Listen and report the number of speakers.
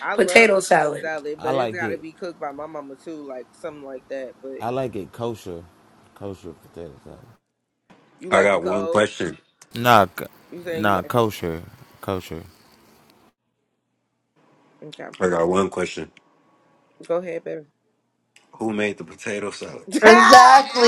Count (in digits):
4